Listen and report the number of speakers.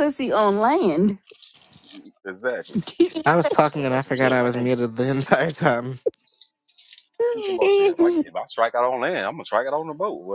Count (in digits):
3